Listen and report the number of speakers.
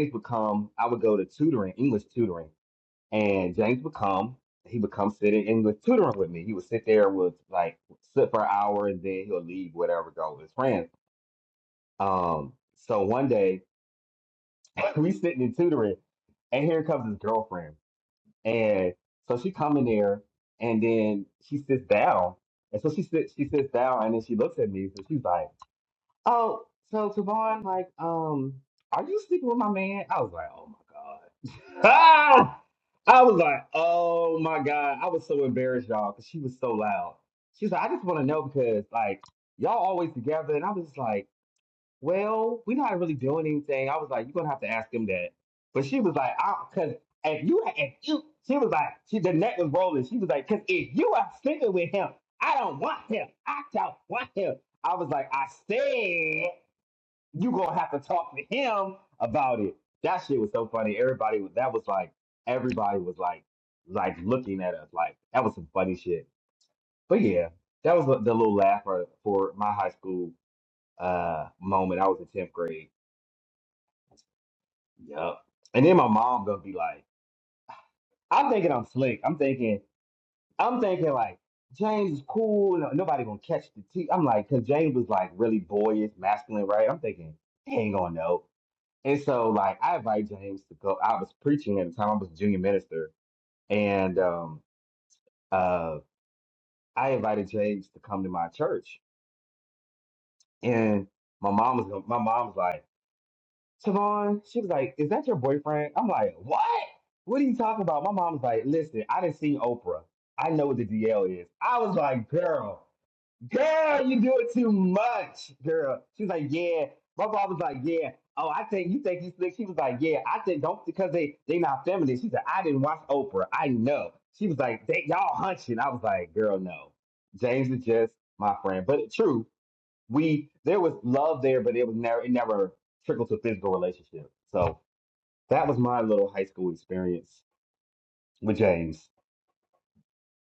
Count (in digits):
1